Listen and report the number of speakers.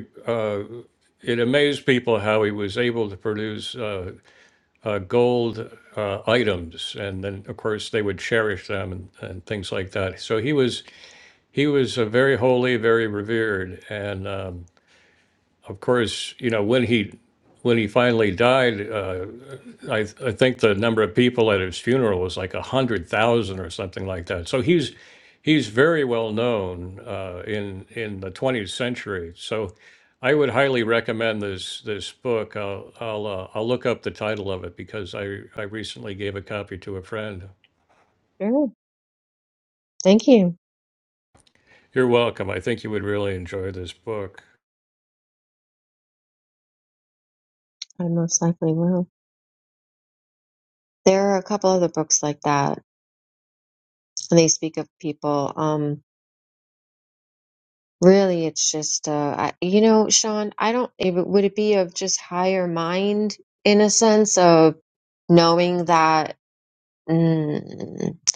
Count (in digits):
2